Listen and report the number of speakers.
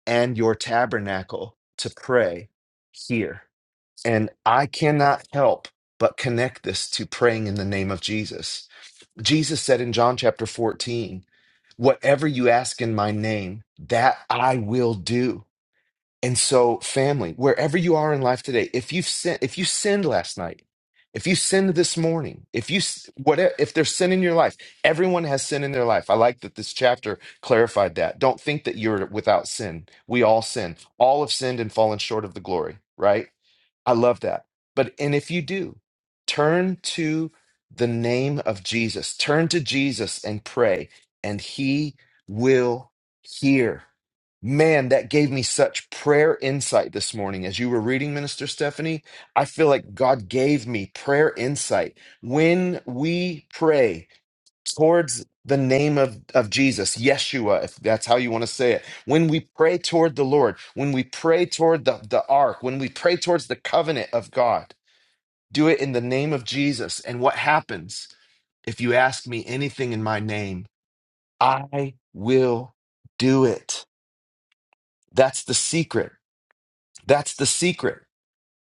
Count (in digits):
1